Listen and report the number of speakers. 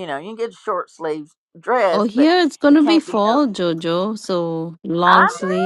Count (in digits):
2